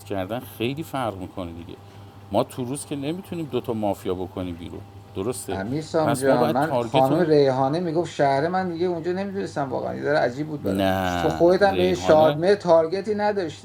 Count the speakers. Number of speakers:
2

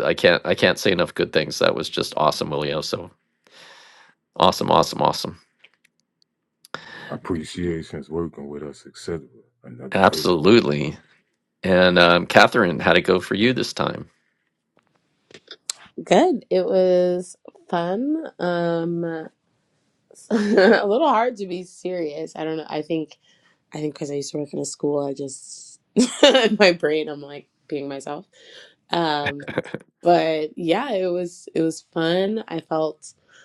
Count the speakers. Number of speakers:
3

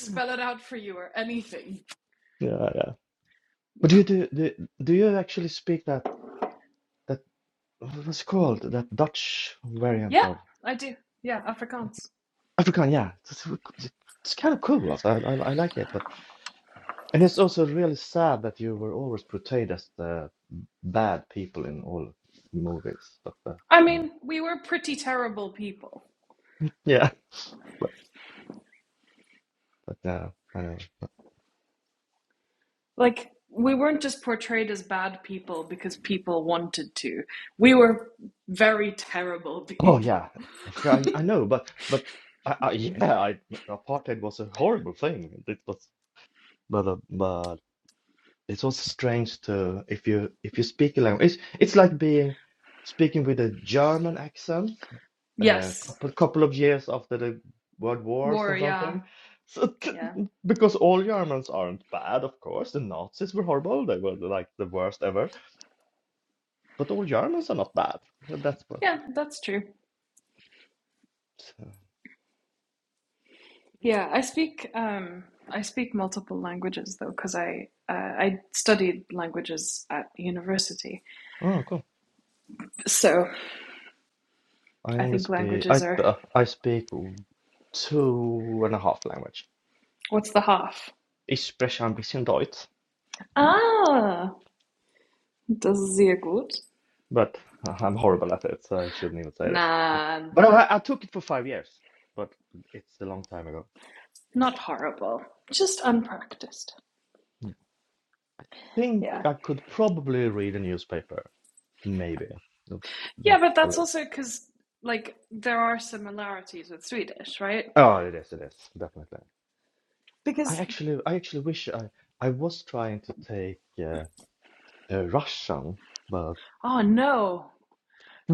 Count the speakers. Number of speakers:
2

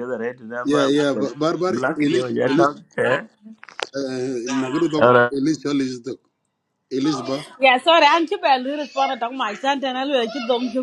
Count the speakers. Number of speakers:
3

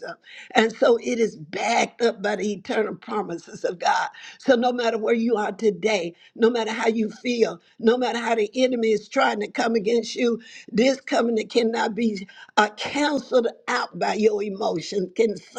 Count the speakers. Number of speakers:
1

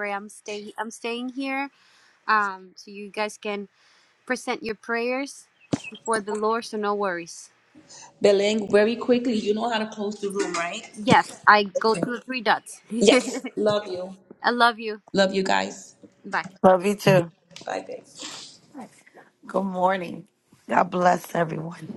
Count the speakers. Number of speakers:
3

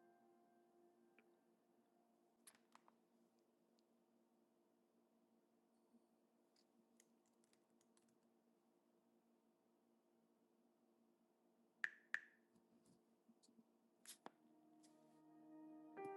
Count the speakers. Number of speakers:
0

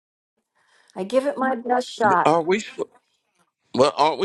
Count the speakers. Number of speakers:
2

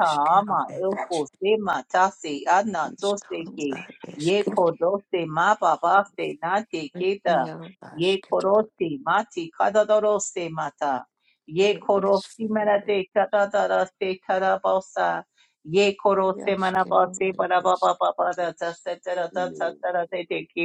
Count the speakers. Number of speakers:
2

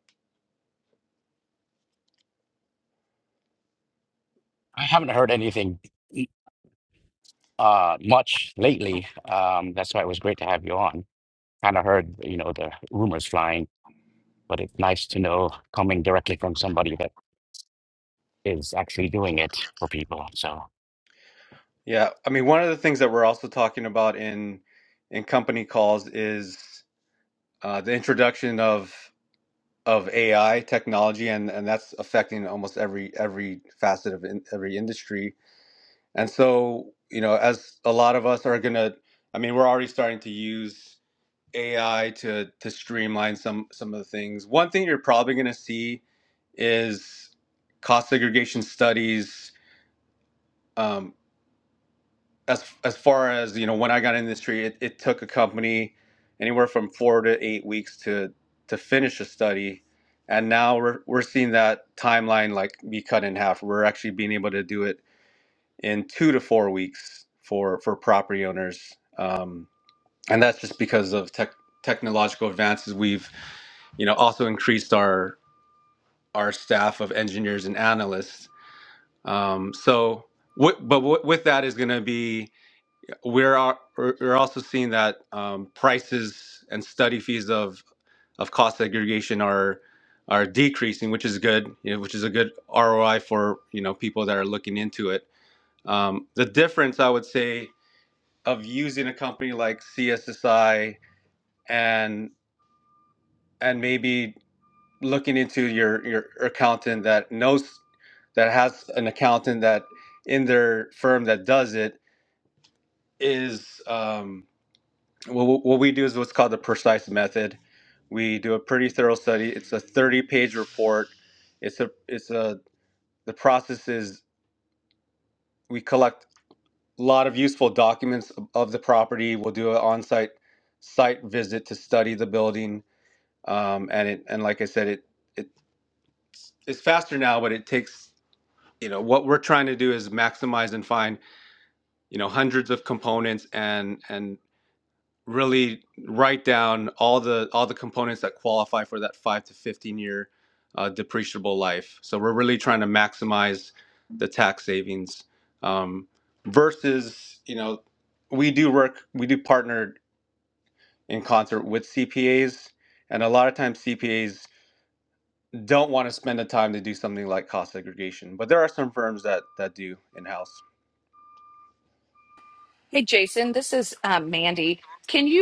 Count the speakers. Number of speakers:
3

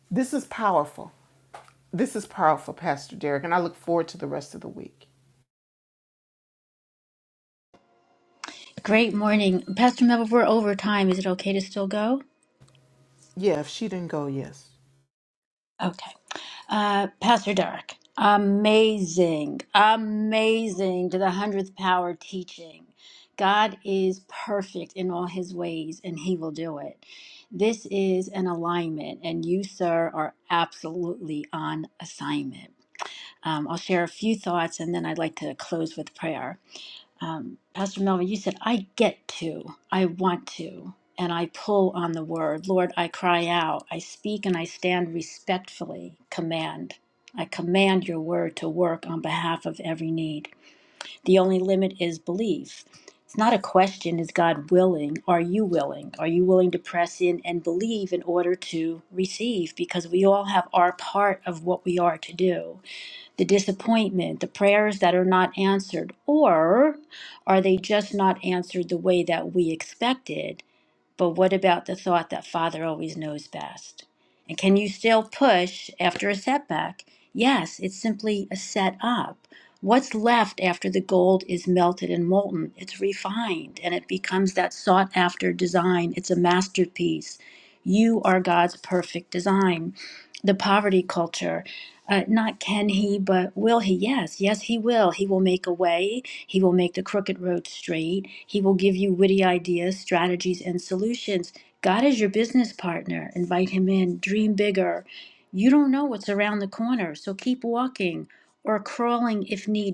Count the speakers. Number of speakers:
2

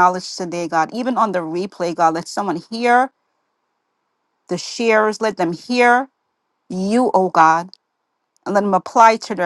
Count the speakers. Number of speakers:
1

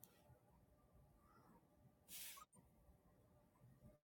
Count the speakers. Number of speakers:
0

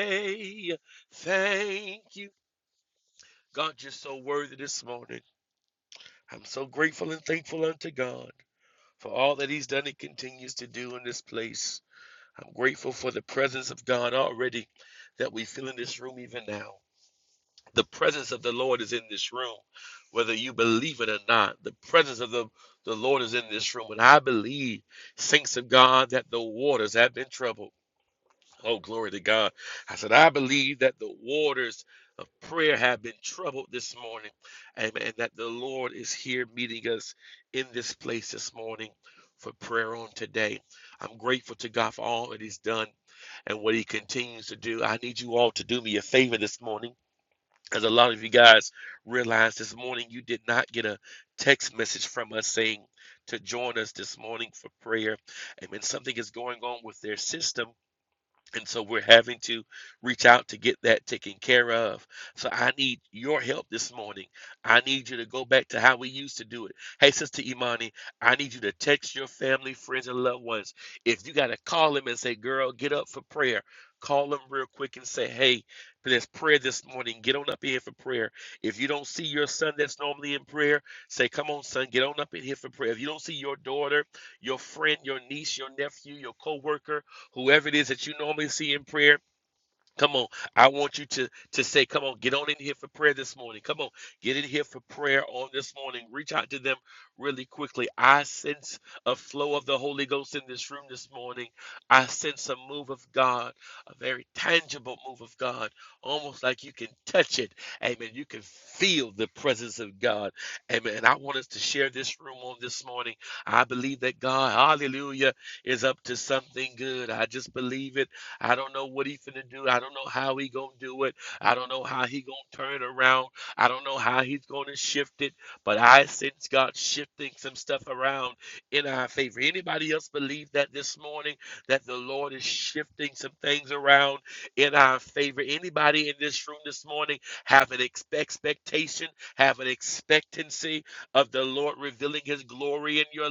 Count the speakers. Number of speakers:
1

